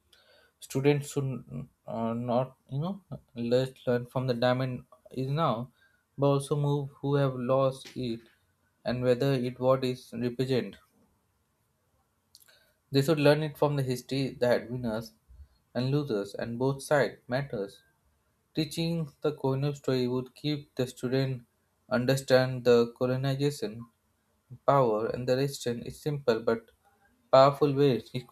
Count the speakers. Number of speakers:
one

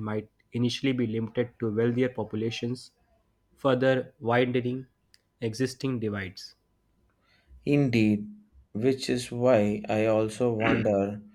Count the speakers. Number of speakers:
two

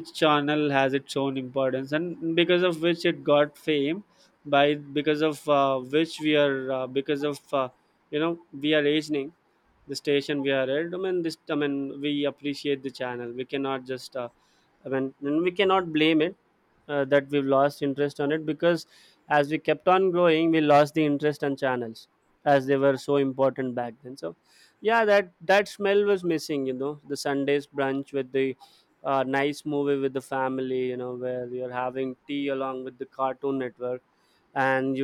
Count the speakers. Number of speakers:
one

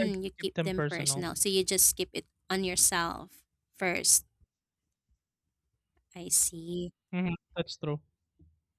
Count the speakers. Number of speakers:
two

